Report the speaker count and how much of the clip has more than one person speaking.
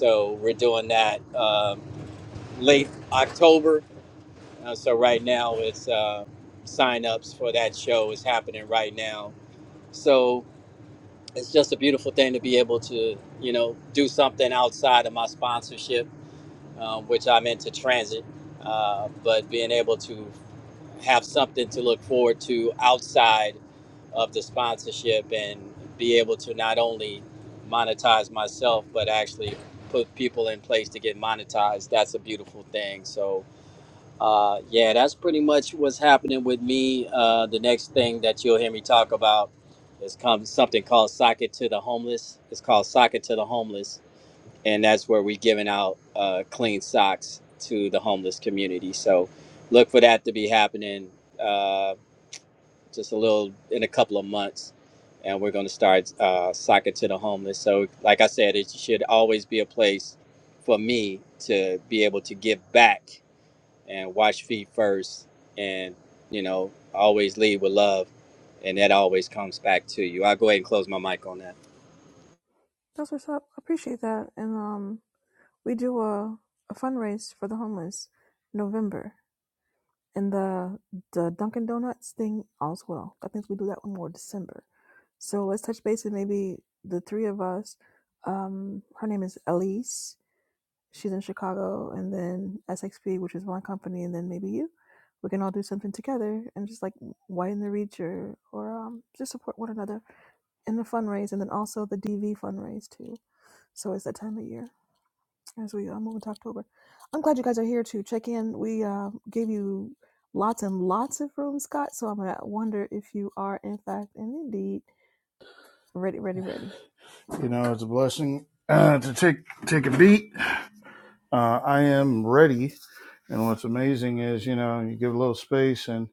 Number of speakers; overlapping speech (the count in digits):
3, no overlap